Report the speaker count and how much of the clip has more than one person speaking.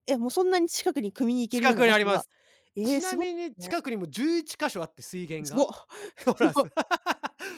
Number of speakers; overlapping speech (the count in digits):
2, about 23%